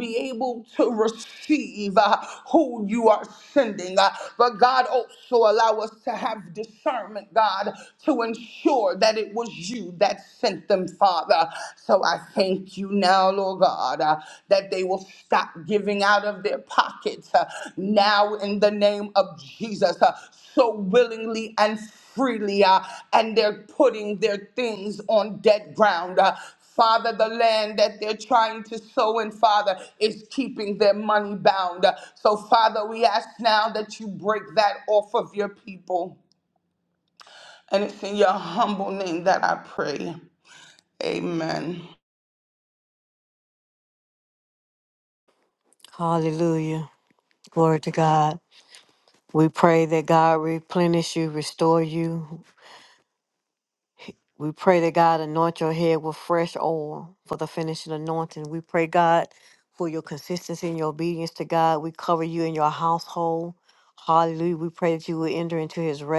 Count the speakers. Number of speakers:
2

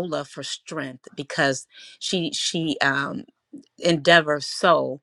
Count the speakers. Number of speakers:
1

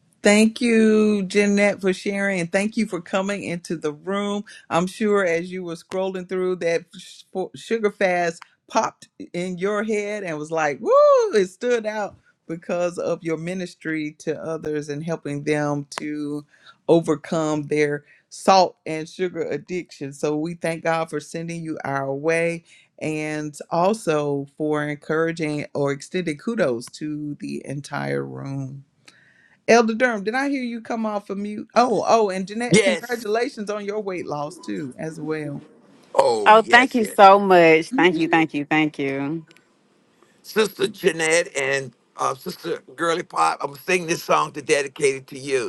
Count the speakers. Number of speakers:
3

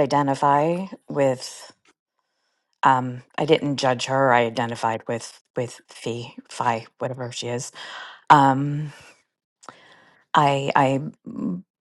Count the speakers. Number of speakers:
1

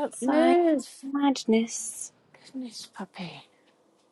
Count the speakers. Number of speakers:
2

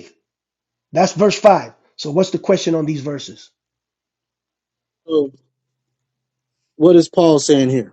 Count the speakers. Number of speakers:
2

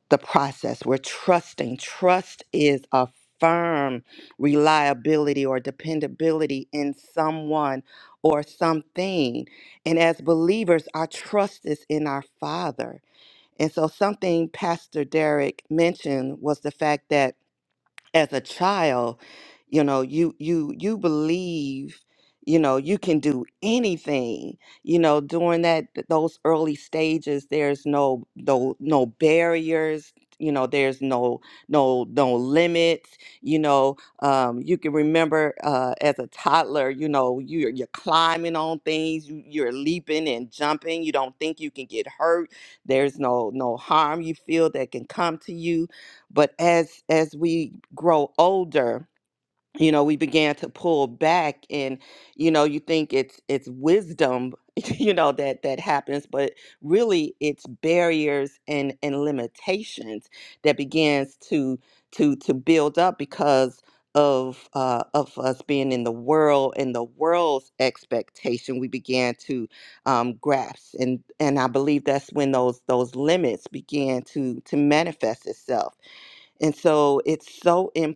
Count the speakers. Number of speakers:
1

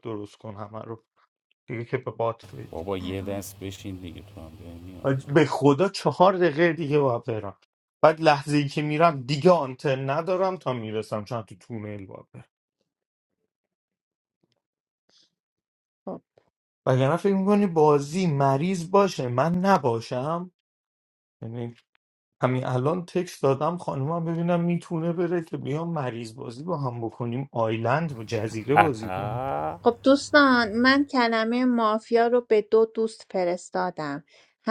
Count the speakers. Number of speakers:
3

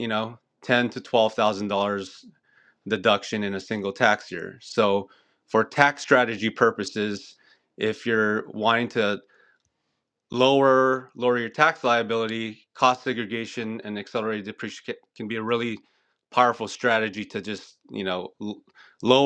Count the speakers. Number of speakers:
1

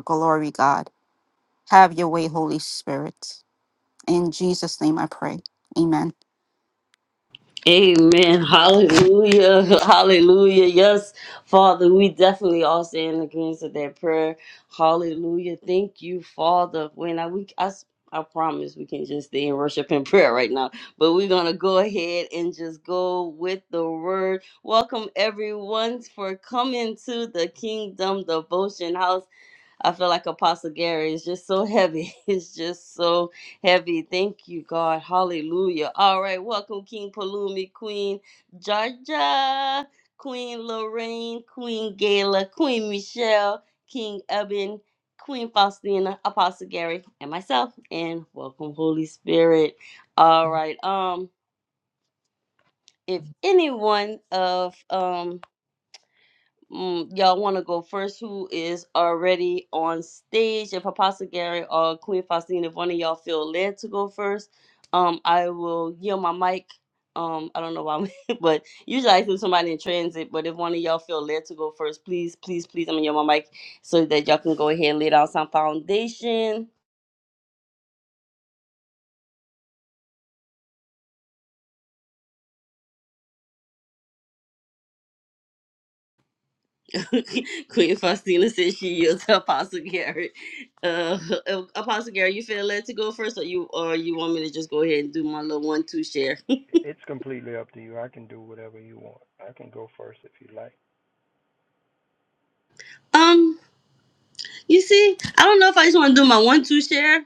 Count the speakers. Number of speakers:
3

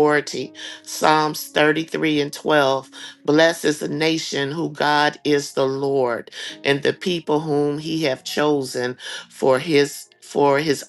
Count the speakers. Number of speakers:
1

